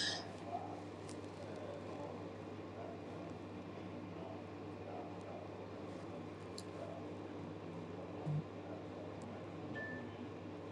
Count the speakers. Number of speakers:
0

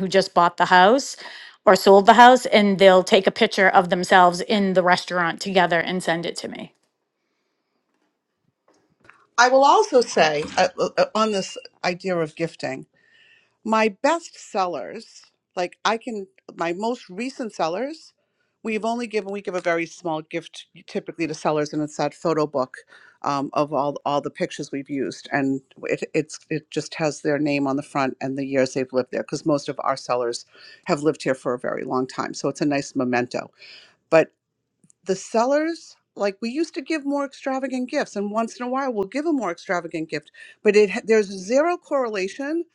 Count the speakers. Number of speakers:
2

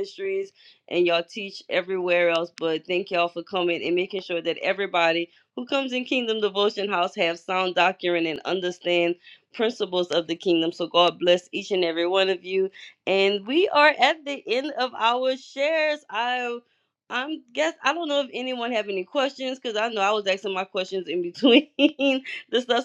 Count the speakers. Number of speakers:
1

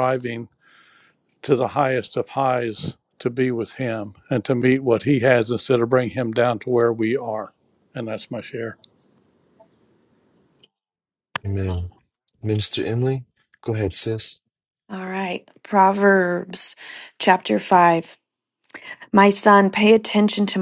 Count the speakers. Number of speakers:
3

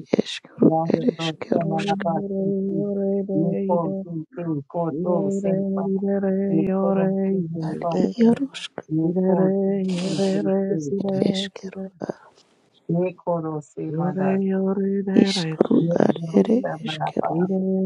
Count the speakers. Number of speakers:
3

